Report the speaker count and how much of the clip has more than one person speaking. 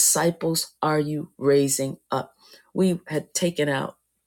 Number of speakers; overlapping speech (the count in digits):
1, no overlap